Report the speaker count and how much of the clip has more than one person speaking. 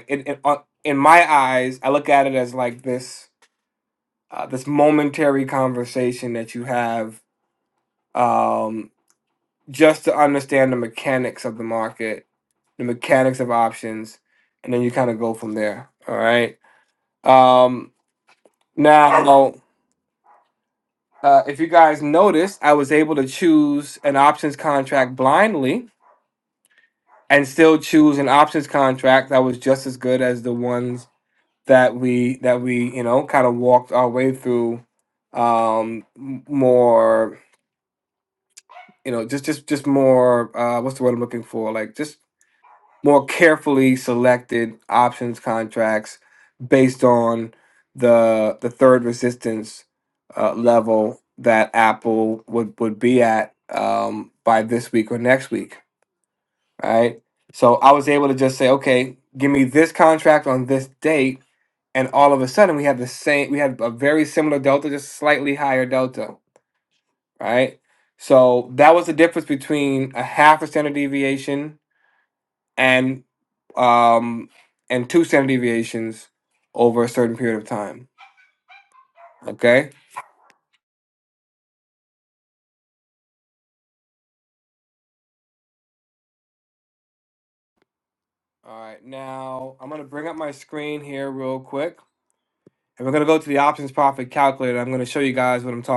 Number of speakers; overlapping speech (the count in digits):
1, no overlap